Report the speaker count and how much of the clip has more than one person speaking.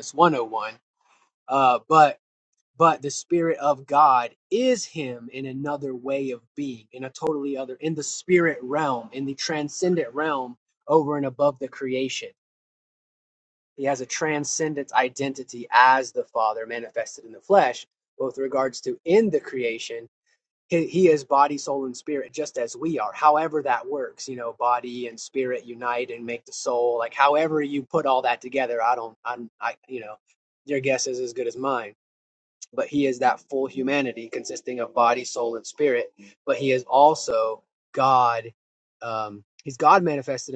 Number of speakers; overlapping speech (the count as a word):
one, no overlap